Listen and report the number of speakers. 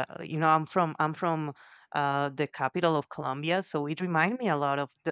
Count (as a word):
one